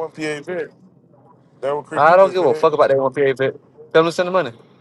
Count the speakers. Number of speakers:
2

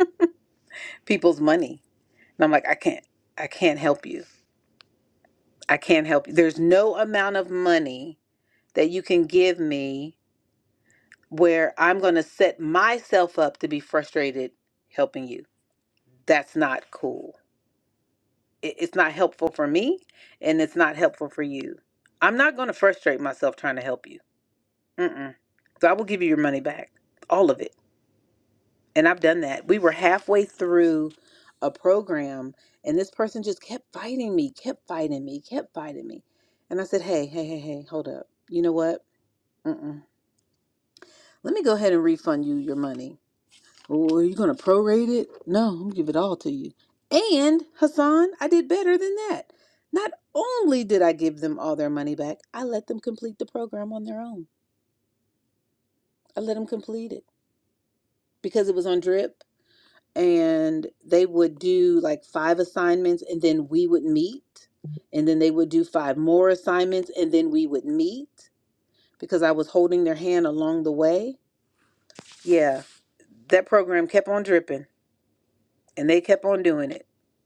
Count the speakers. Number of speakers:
1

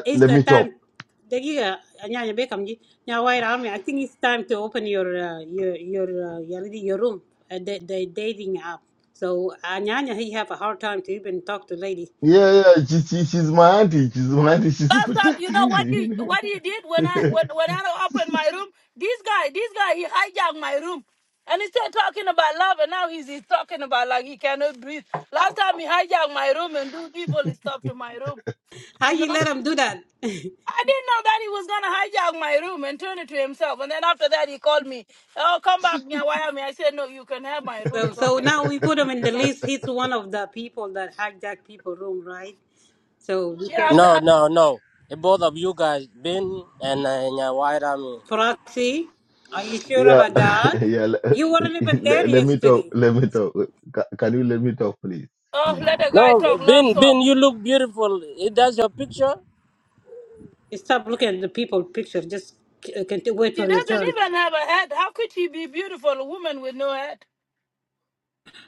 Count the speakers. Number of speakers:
4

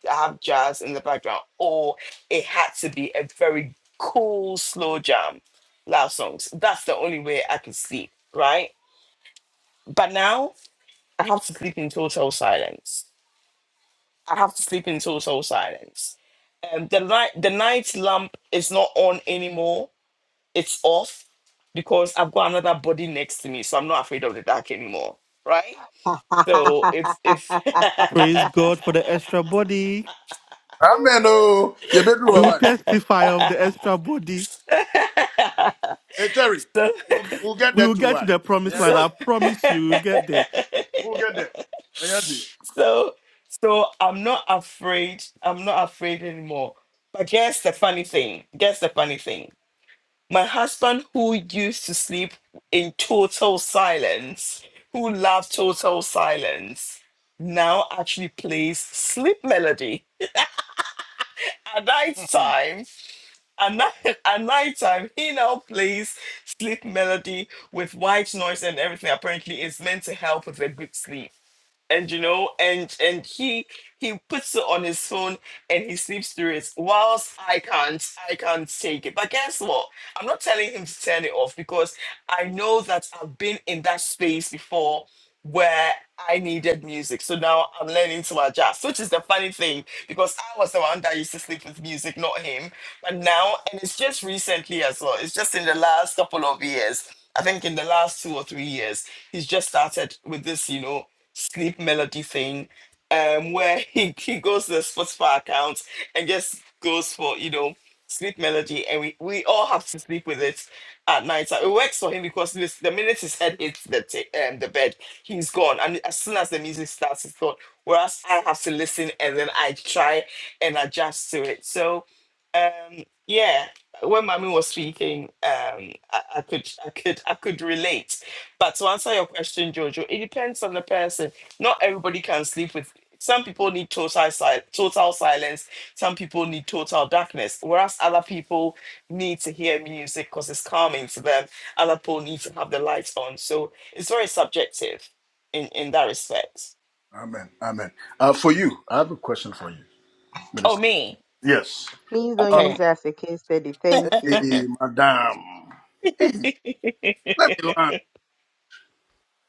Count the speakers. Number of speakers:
4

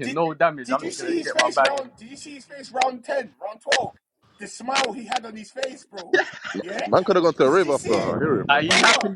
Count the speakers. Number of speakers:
3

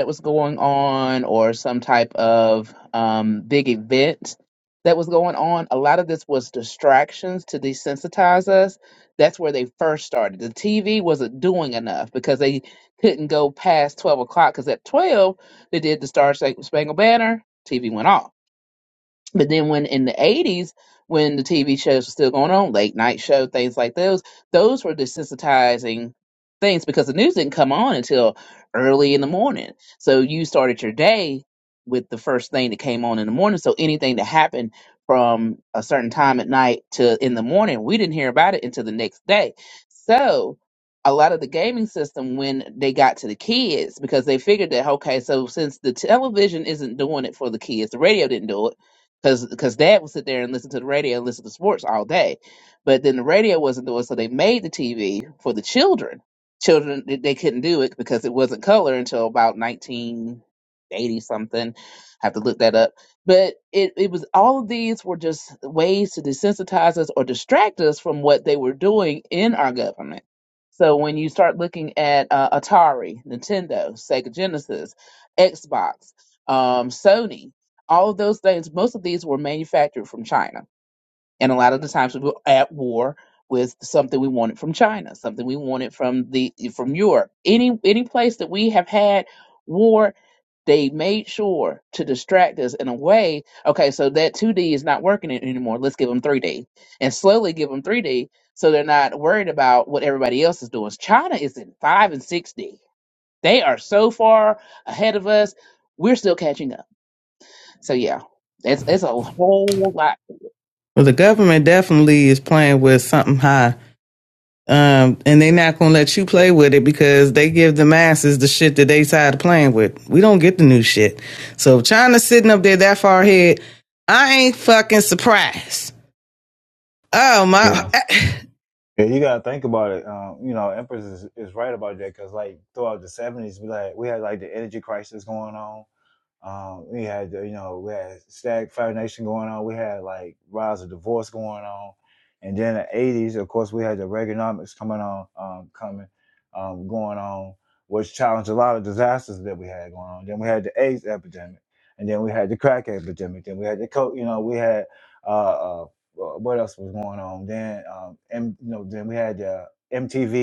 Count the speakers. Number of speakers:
3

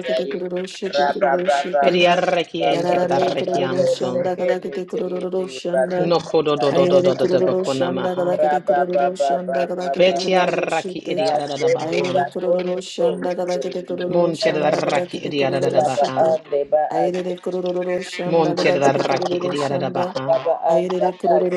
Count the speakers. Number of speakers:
3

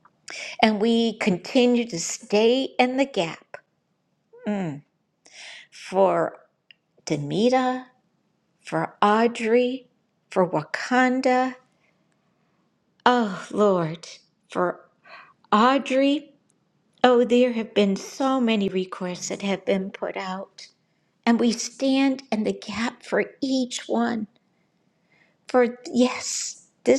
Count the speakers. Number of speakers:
1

